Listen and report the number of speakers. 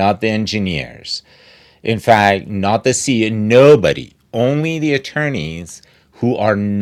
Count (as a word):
one